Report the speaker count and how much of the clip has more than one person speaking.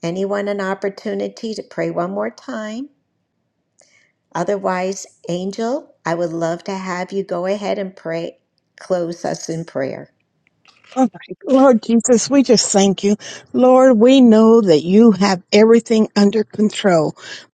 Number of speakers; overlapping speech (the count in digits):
2, no overlap